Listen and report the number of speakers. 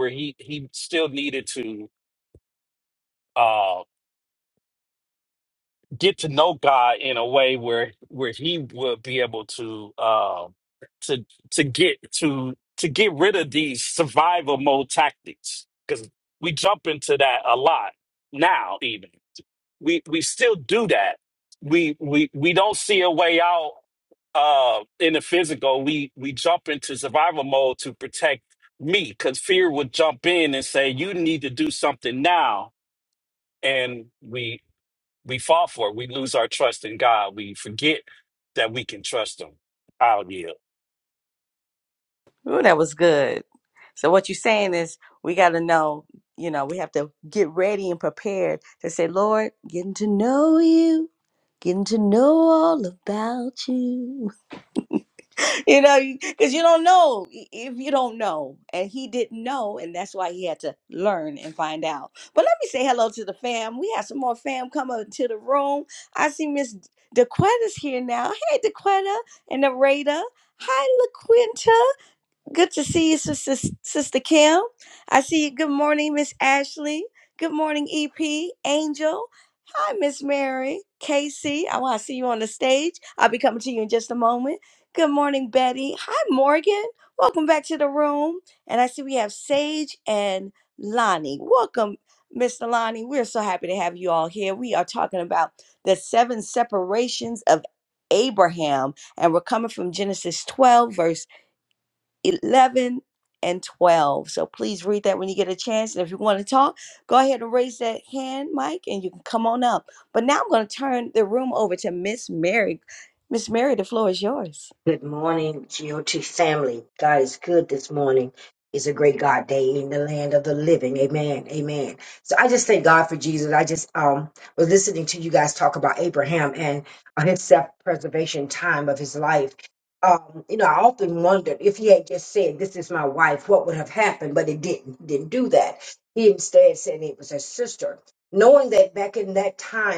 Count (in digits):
3